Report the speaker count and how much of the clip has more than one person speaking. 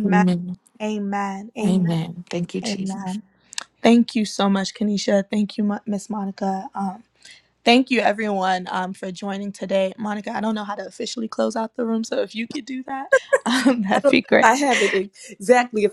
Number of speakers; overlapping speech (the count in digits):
3, about 9%